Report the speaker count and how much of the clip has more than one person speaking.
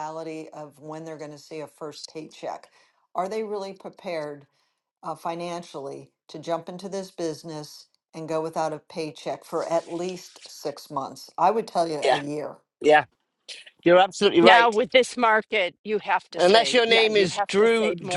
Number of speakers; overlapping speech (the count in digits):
3, about 13%